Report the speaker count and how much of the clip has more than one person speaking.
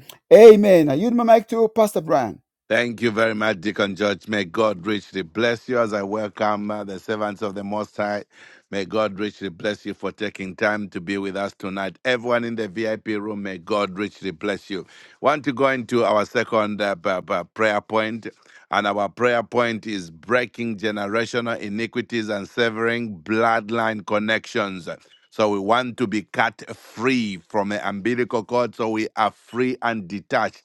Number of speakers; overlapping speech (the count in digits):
2, no overlap